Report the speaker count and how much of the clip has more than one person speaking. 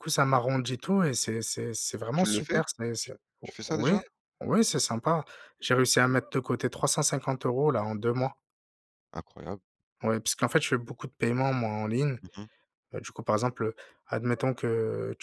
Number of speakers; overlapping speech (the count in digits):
2, about 5%